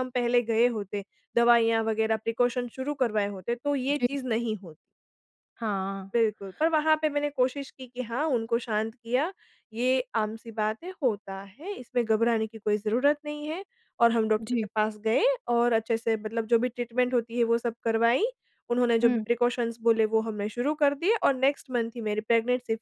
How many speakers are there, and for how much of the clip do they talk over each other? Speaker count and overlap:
two, about 3%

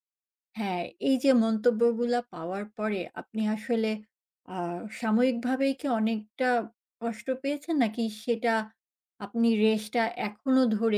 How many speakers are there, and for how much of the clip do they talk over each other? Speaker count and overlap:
one, no overlap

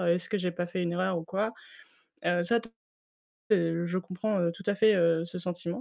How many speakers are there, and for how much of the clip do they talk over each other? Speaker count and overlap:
one, no overlap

